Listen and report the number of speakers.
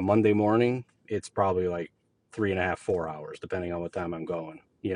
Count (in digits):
1